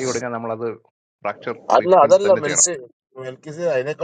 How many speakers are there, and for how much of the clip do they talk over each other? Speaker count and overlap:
2, about 22%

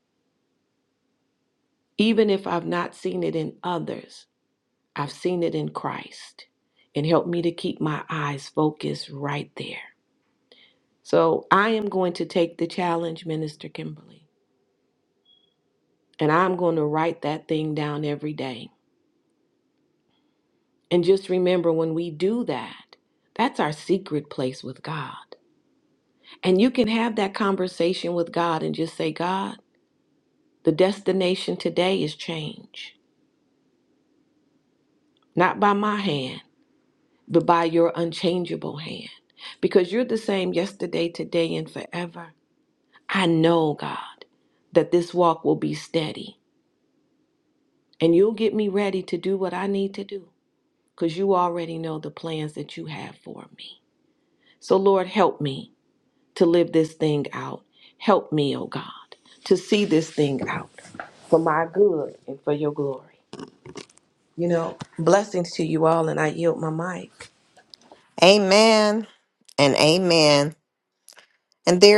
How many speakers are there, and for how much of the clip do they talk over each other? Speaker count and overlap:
2, no overlap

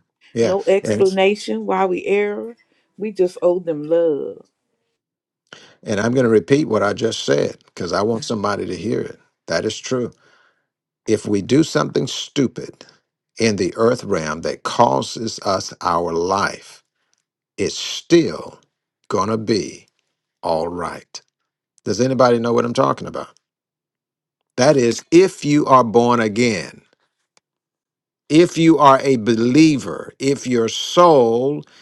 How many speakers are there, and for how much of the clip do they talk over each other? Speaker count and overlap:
2, about 2%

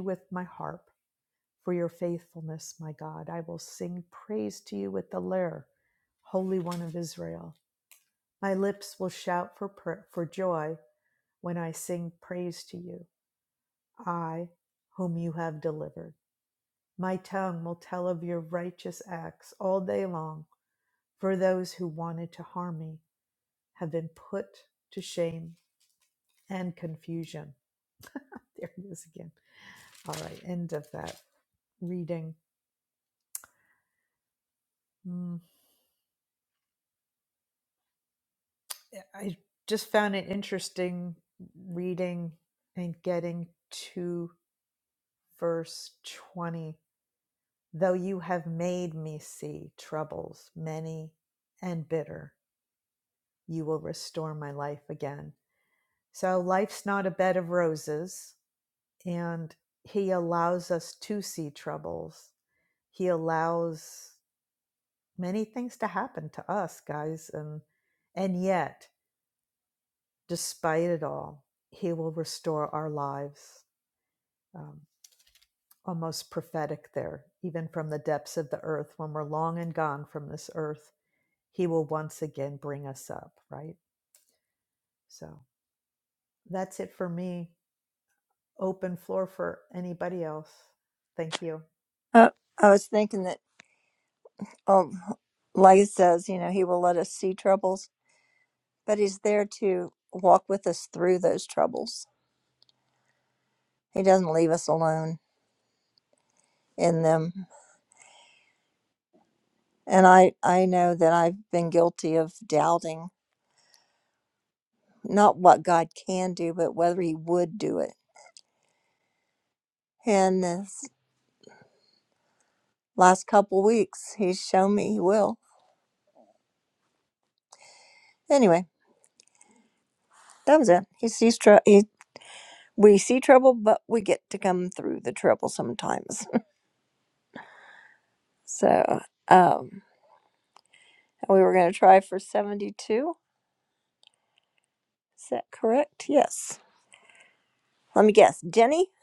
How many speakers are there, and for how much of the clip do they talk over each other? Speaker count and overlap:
2, no overlap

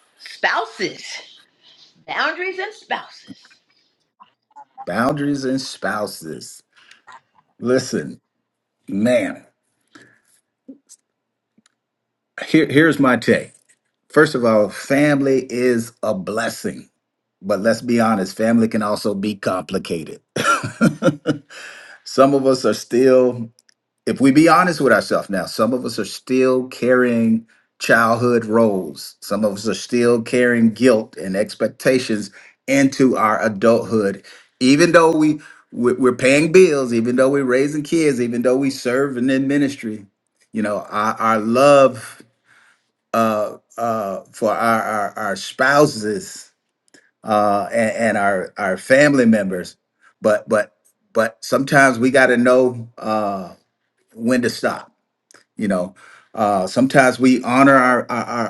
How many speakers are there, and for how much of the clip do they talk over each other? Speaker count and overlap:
2, no overlap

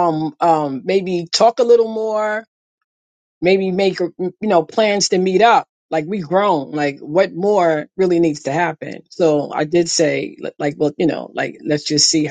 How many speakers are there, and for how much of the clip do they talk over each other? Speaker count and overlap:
1, no overlap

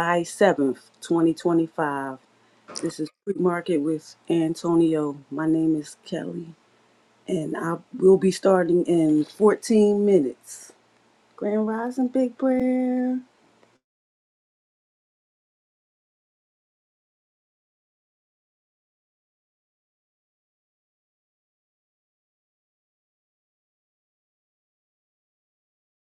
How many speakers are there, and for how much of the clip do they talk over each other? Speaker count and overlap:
1, no overlap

